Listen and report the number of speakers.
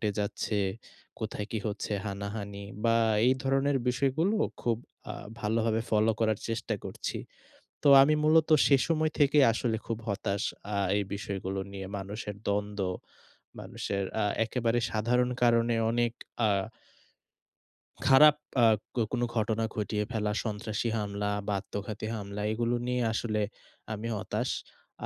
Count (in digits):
1